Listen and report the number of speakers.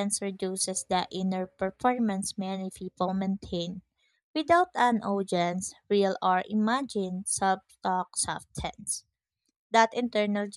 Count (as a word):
one